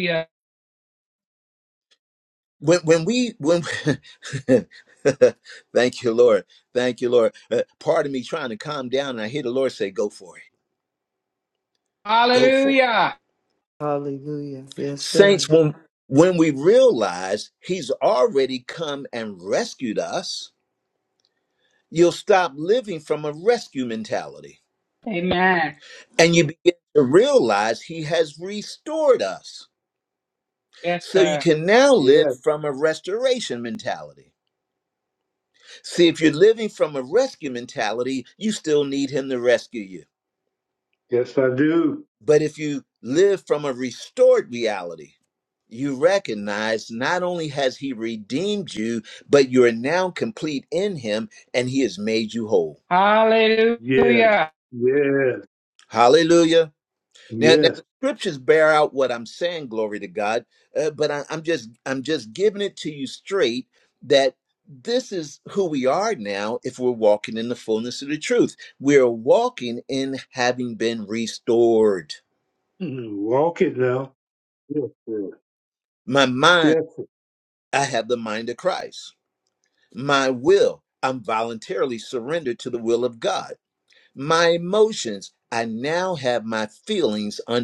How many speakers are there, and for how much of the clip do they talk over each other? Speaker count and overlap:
four, about 3%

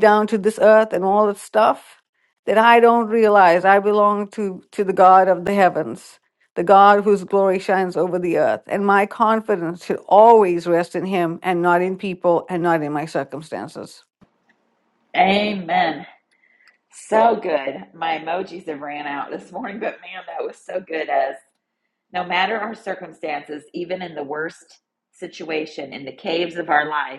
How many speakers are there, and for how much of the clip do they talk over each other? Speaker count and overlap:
two, no overlap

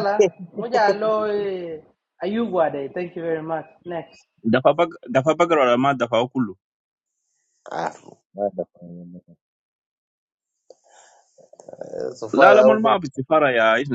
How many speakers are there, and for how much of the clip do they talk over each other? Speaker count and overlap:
three, about 5%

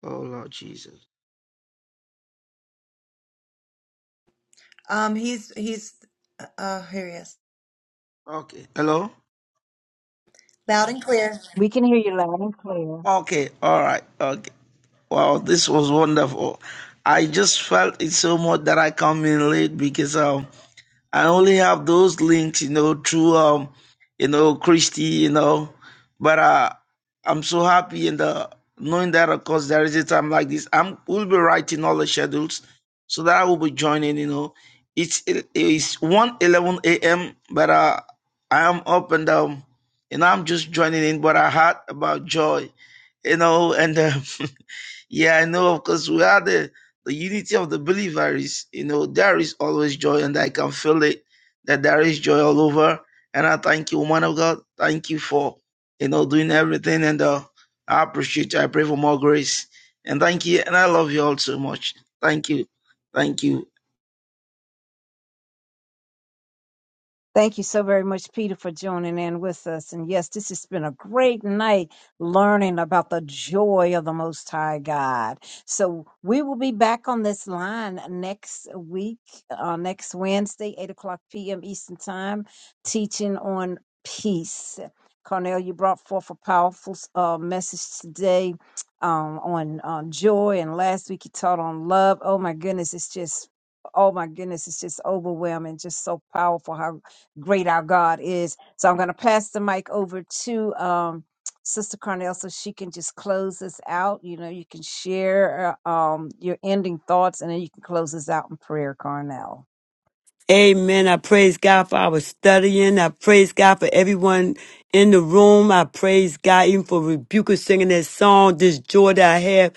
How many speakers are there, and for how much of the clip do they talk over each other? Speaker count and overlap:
four, no overlap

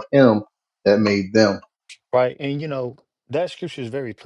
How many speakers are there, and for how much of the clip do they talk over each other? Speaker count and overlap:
two, no overlap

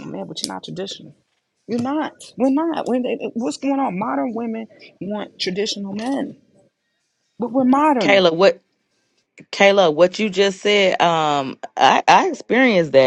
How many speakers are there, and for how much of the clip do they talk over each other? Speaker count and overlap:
two, about 2%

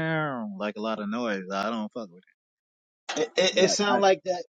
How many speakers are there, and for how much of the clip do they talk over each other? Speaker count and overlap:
two, about 3%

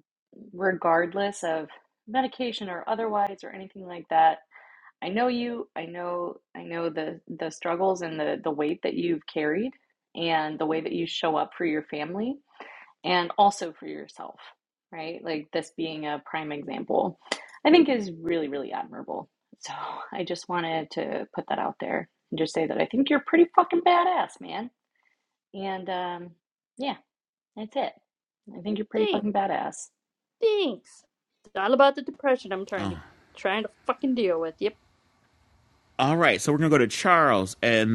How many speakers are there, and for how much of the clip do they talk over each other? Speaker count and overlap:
three, about 1%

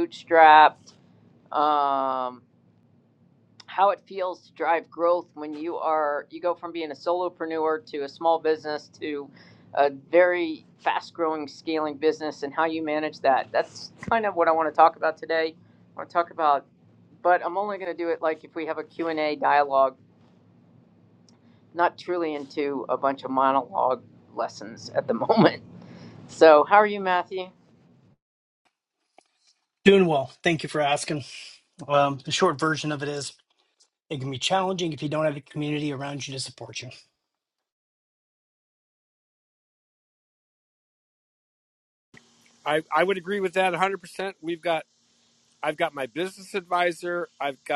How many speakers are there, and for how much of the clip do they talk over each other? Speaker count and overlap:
three, no overlap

